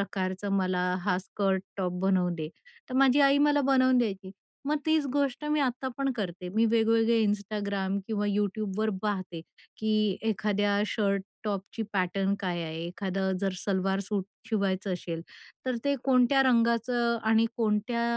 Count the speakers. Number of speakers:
one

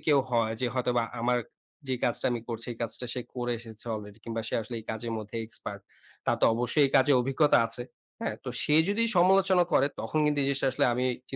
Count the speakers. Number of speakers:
one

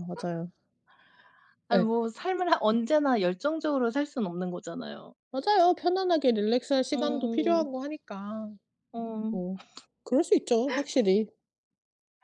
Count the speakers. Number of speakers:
two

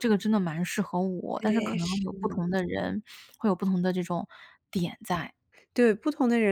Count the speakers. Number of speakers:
two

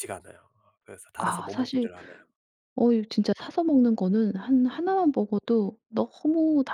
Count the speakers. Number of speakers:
two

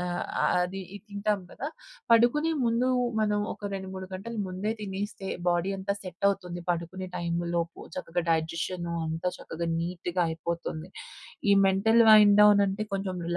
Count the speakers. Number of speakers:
one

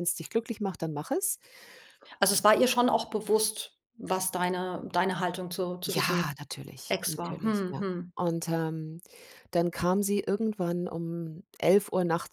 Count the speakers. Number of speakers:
two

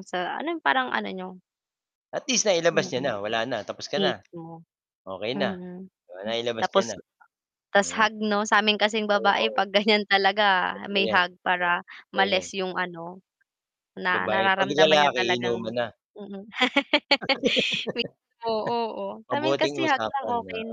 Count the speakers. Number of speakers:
two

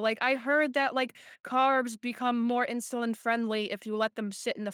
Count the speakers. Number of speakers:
one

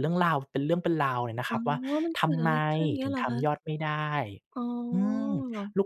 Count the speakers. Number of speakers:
two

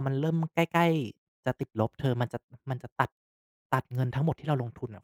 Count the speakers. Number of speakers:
one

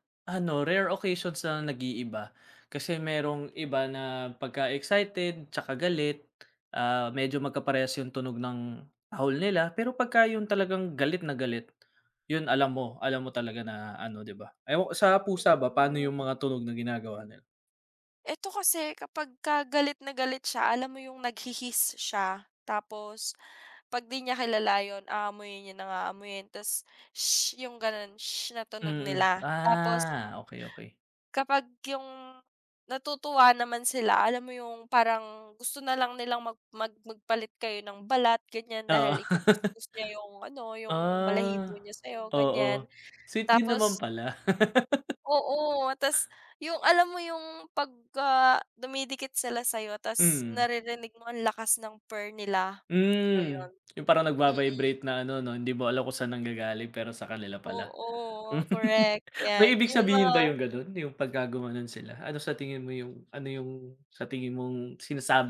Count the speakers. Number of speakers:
two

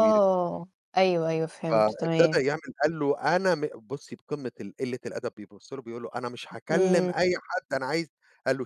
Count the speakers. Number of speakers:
two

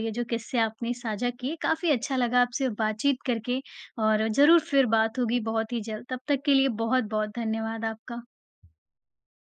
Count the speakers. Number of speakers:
one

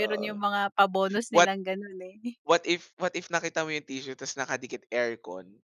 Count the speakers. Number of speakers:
two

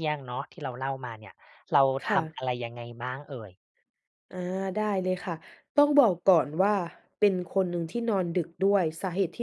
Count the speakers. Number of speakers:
two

